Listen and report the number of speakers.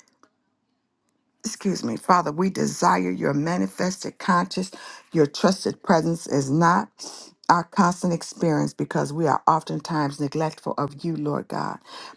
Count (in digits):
1